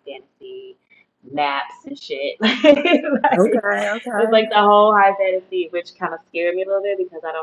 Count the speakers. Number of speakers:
two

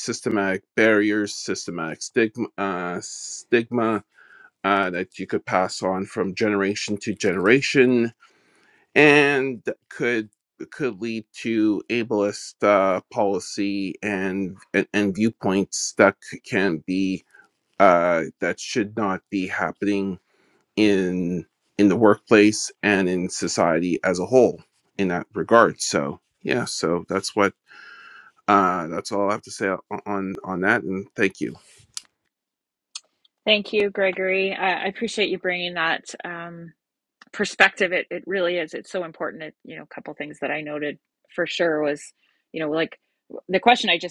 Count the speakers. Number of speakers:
two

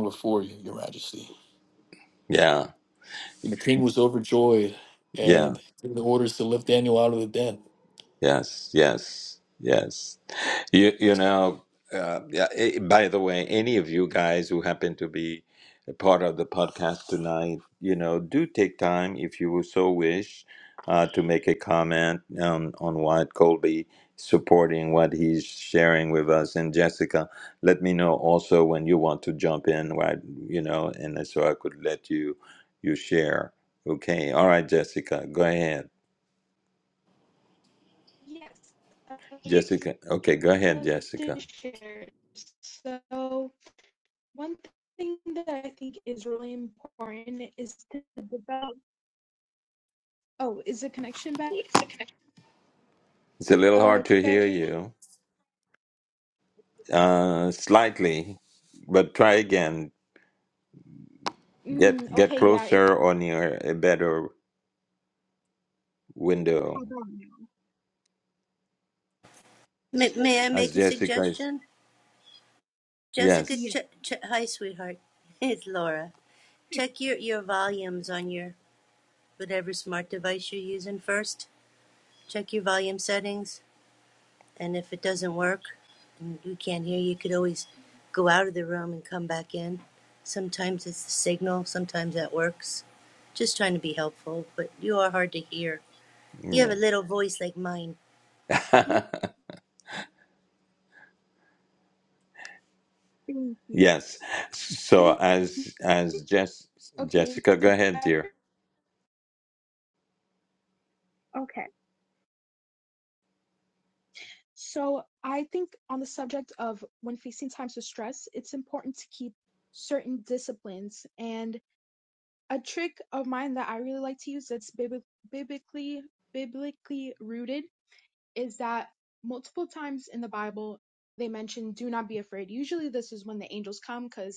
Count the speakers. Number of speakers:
four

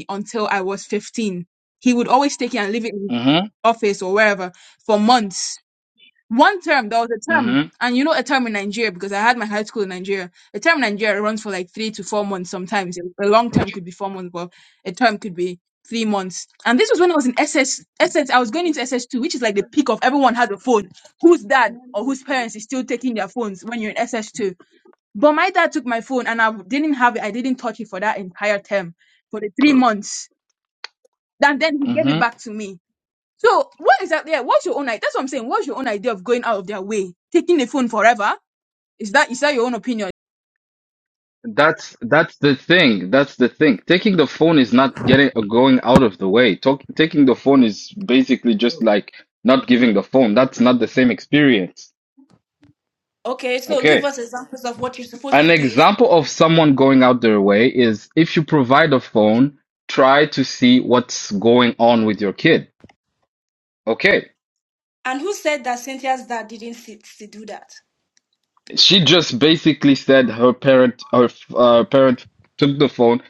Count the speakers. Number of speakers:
three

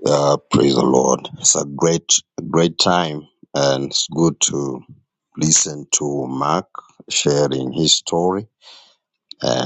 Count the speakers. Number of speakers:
one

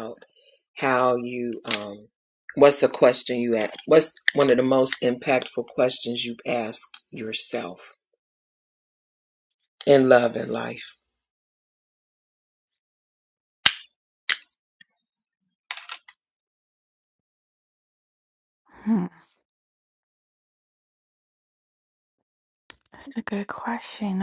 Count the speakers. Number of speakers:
two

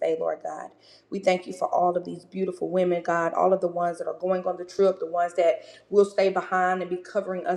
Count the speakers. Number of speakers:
one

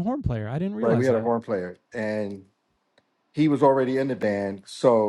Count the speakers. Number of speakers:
two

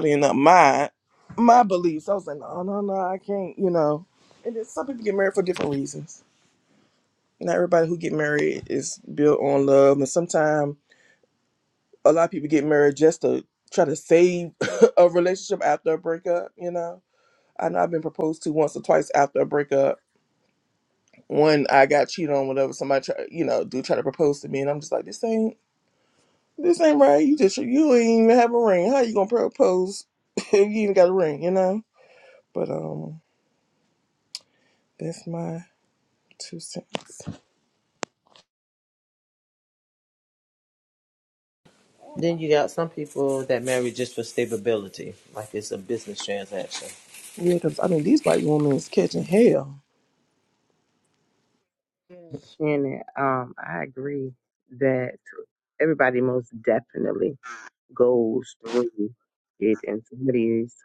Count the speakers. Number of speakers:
three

